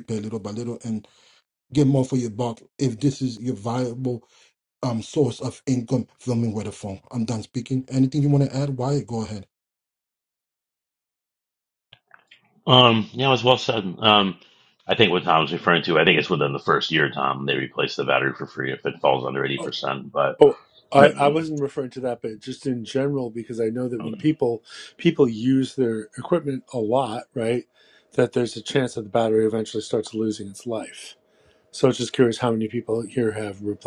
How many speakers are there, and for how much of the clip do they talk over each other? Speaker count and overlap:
three, about 1%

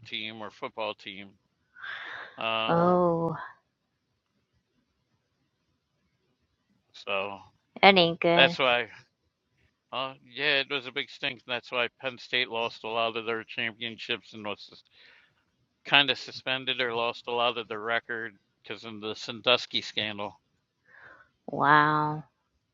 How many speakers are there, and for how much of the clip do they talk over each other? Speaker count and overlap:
two, about 1%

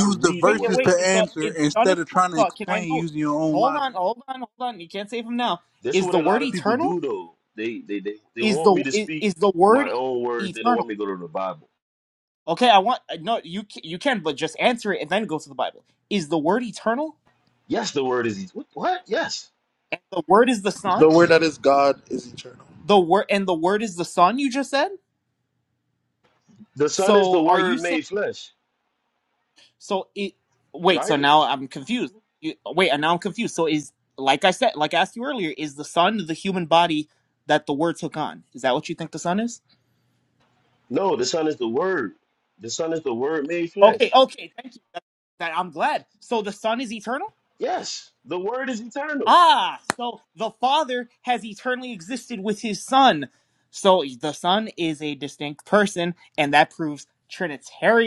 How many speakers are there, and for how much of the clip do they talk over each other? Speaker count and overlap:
four, about 13%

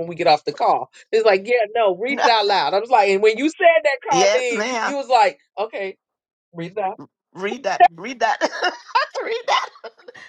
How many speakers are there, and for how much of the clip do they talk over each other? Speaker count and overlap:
two, about 8%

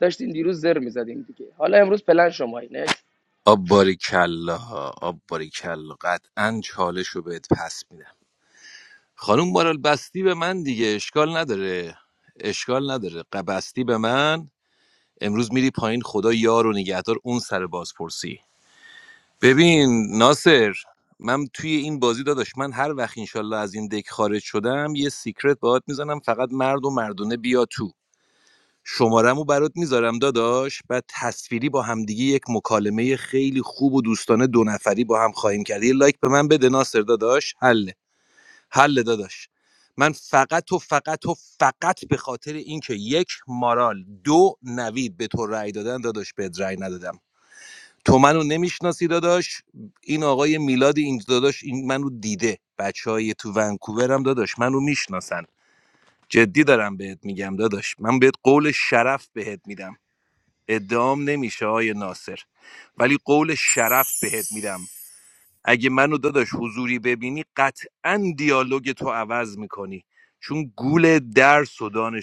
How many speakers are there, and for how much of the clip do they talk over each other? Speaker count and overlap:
two, no overlap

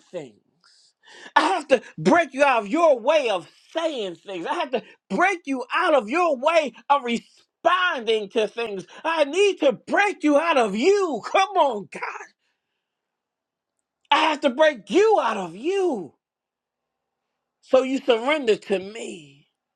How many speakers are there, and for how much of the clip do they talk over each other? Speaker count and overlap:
one, no overlap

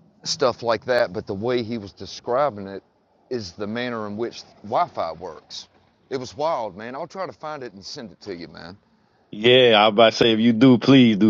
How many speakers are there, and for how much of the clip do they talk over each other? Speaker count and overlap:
two, no overlap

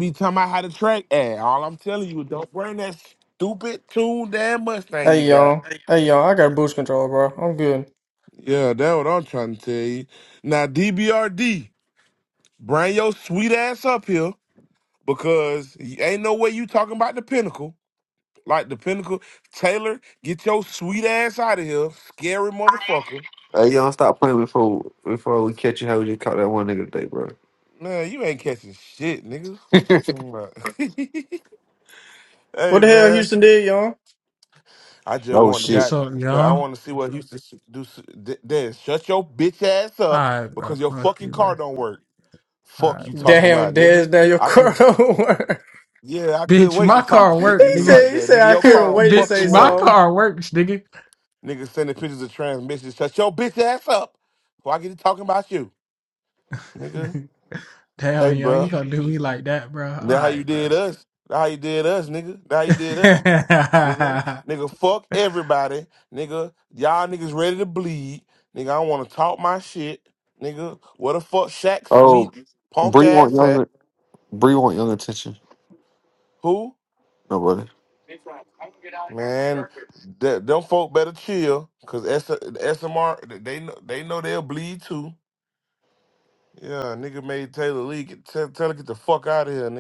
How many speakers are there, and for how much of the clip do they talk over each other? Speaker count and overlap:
five, about 12%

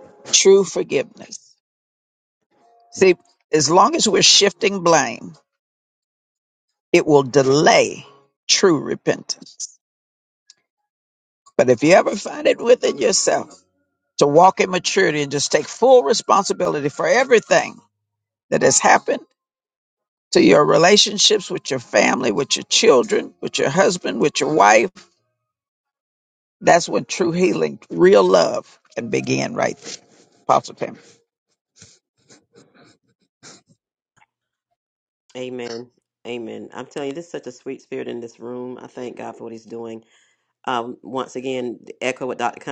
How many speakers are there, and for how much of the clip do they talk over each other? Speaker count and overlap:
two, no overlap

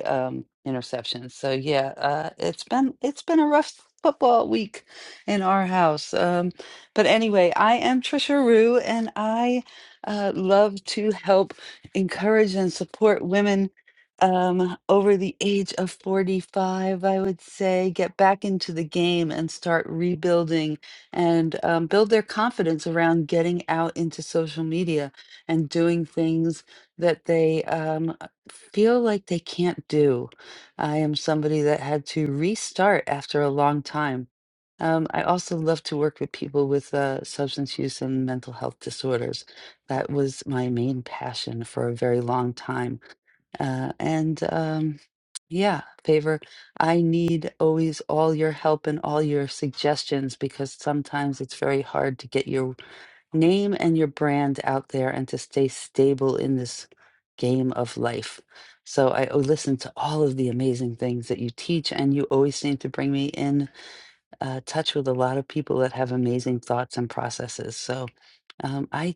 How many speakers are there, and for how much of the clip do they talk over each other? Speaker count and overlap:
one, no overlap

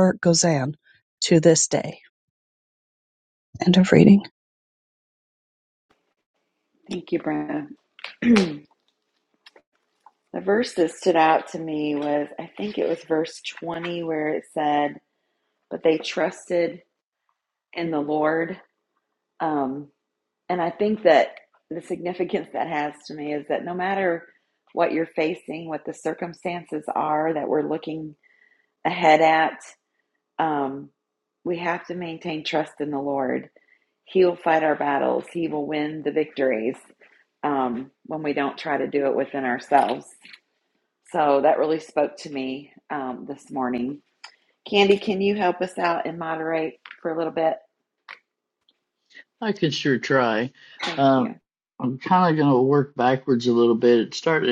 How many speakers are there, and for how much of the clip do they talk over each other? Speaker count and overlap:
three, about 1%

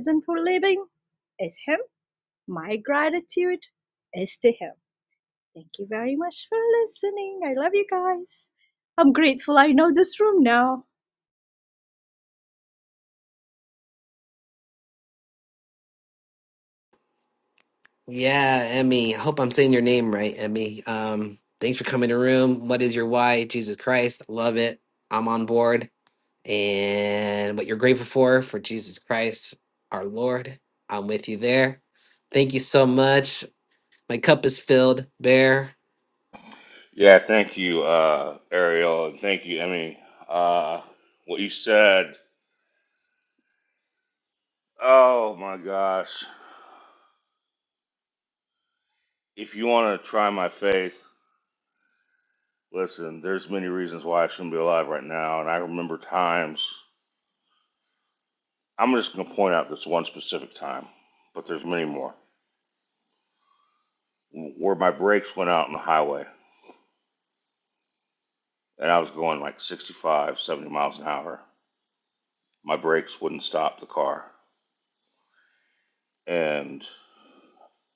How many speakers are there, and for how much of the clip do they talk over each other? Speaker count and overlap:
three, no overlap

